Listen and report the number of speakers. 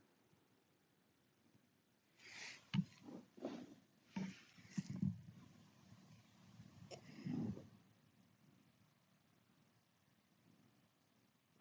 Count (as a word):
zero